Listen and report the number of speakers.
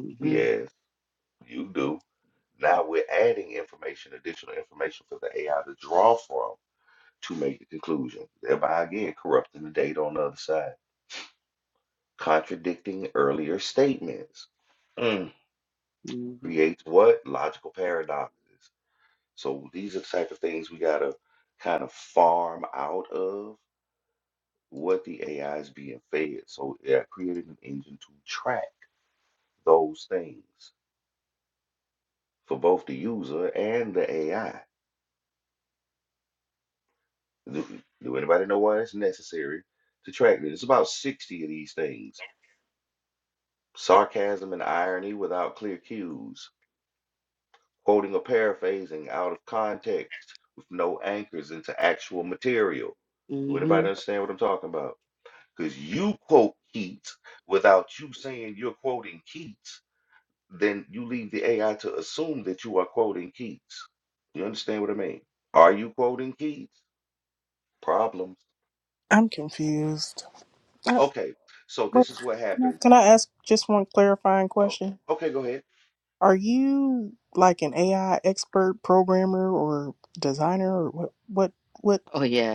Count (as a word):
three